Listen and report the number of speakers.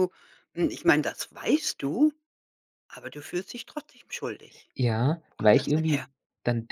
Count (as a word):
two